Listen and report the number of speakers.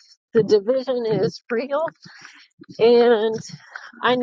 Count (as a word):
one